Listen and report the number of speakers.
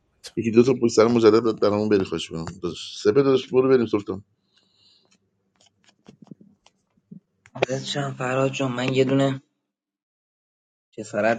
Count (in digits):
2